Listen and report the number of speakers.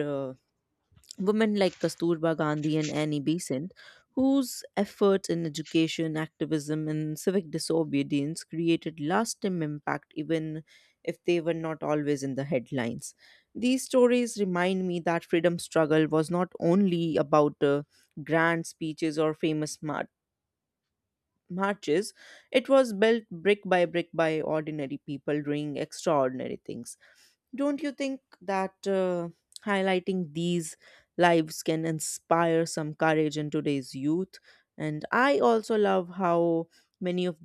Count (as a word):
one